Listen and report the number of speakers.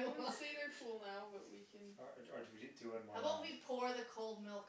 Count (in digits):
3